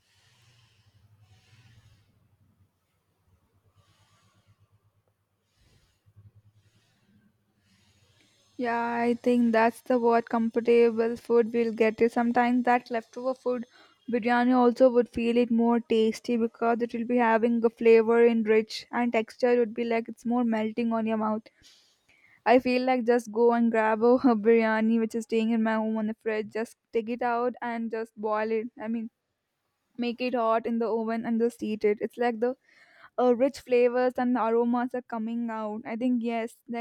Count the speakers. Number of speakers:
1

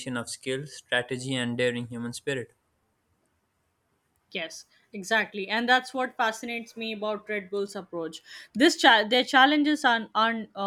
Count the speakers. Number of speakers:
2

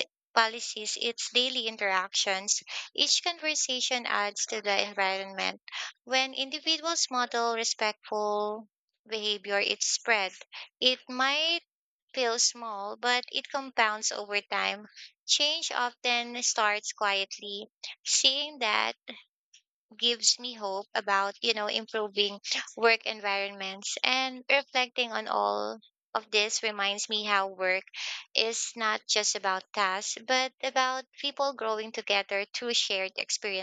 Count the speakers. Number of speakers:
1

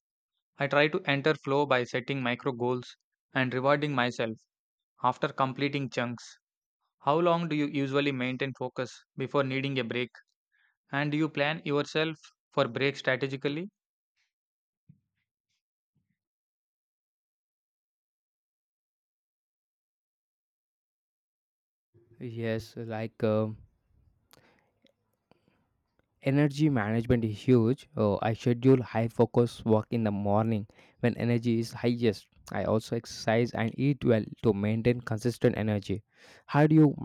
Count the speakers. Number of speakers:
2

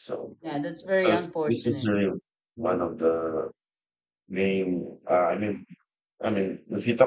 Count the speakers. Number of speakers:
2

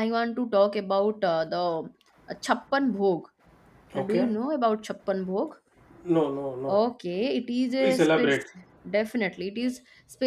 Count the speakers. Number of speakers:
2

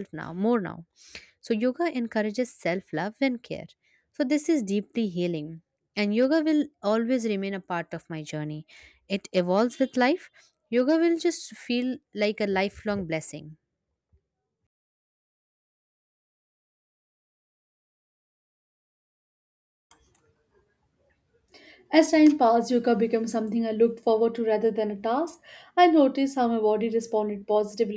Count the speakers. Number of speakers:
2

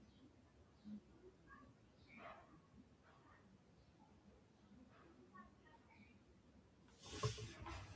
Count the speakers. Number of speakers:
0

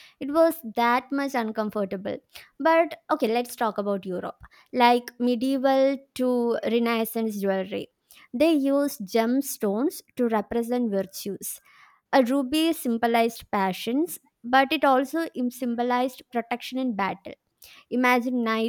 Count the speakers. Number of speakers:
1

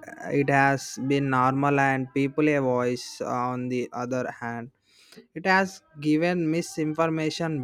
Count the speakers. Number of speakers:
1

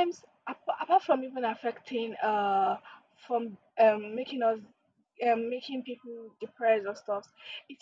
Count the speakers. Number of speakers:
1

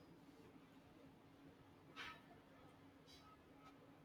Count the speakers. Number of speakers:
0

